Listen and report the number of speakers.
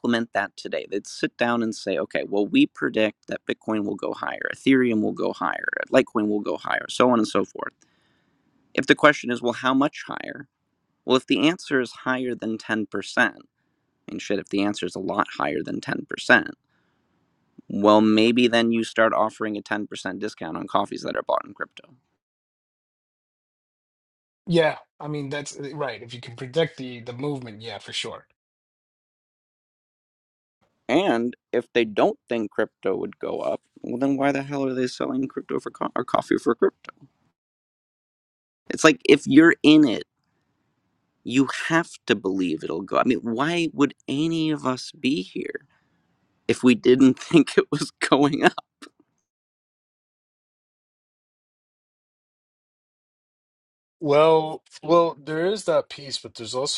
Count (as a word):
three